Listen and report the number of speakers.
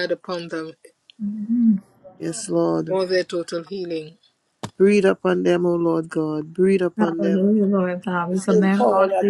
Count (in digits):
3